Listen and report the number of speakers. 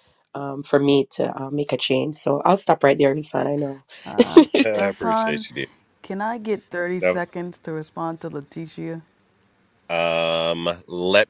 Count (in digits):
3